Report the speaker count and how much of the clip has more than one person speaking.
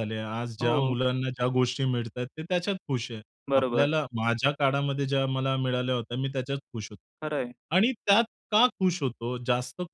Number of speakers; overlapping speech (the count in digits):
2, about 7%